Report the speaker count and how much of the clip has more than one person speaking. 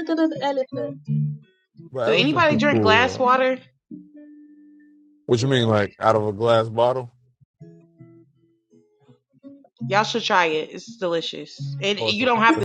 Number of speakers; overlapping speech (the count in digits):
3, about 17%